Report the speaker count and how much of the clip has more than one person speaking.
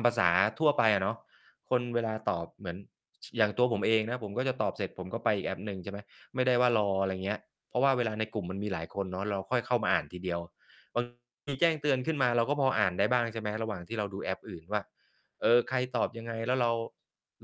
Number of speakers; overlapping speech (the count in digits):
1, no overlap